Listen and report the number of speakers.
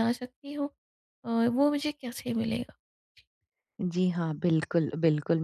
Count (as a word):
two